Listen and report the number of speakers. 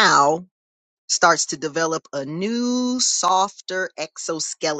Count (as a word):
one